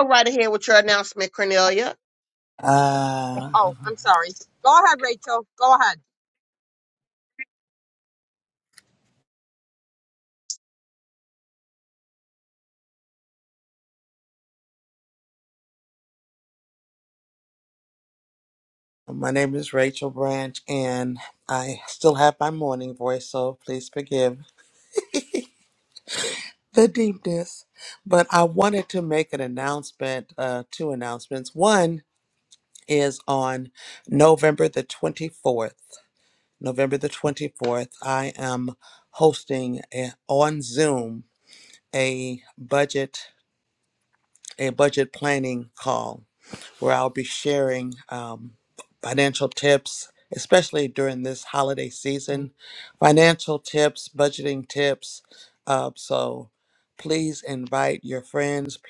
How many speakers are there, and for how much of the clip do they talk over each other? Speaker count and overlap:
three, under 1%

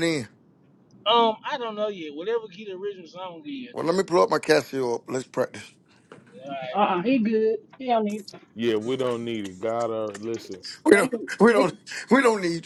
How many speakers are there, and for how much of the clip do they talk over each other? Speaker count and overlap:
four, about 7%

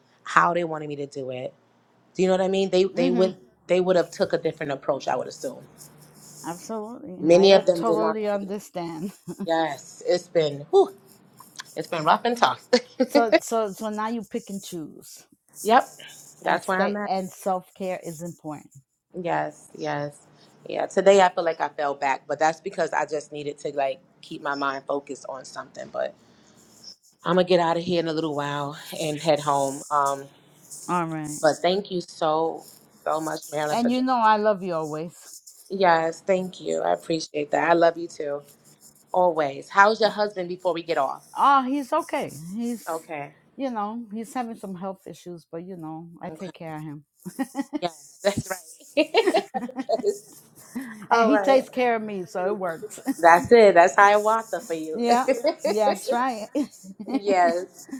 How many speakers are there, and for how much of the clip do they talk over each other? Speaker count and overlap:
two, about 6%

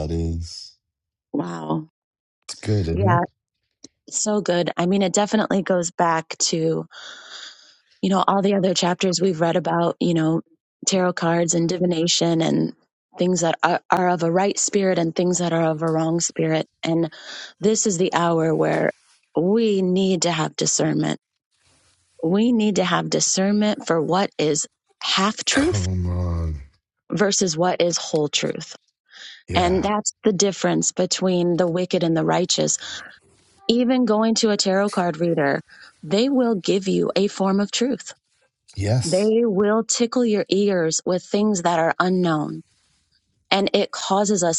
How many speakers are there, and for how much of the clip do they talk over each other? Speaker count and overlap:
two, about 2%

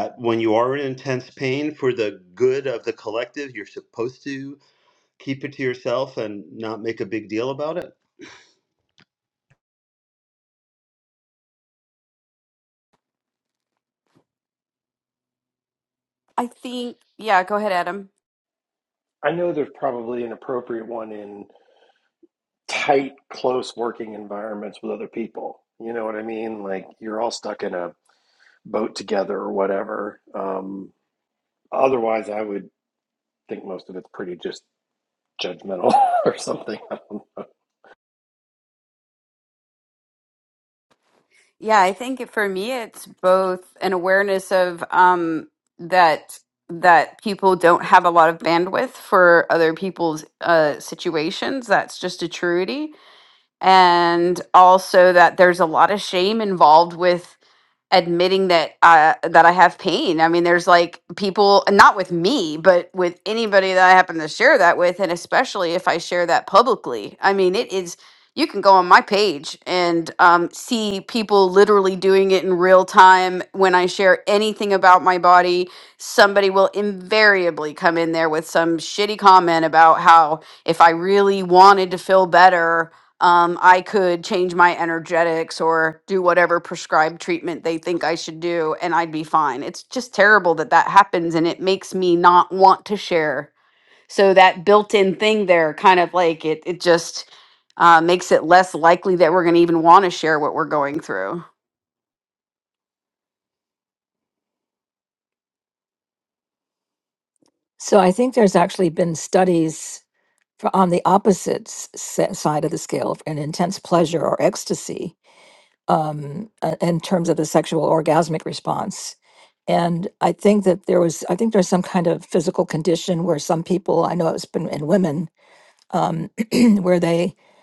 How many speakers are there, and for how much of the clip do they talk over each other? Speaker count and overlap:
four, no overlap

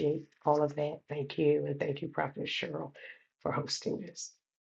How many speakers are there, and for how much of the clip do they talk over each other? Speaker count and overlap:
one, no overlap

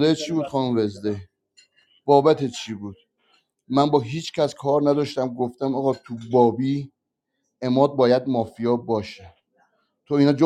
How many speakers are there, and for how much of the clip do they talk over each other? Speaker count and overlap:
one, no overlap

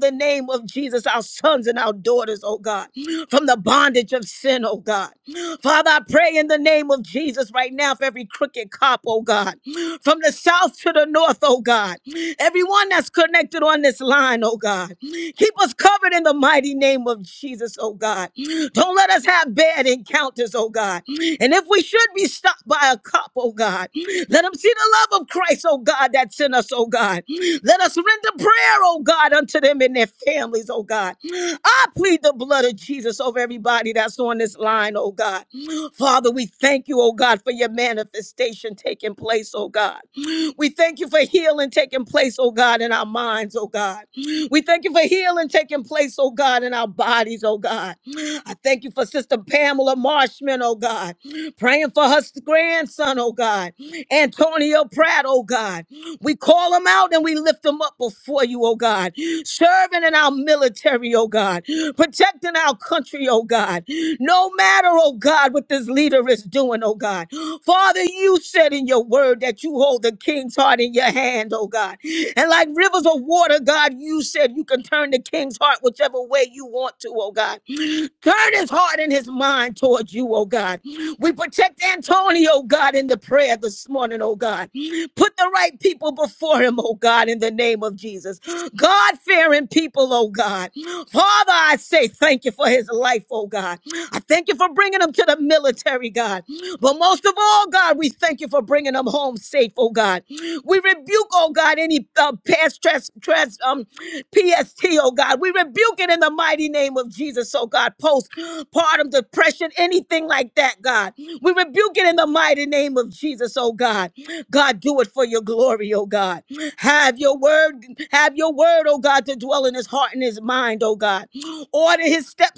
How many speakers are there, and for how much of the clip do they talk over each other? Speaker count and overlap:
one, no overlap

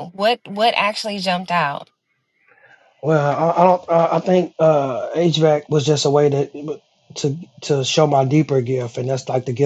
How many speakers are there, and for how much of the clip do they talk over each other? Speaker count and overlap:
two, no overlap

